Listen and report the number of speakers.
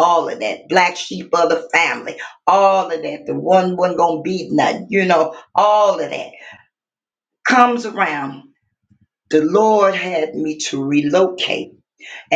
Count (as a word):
one